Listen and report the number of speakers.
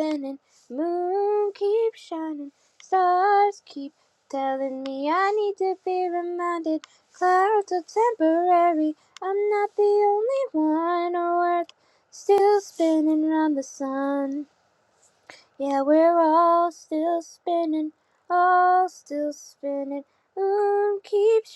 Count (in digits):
1